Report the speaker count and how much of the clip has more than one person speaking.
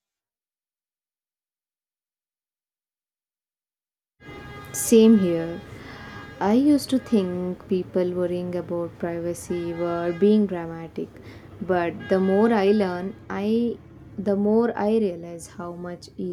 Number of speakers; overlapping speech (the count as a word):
one, no overlap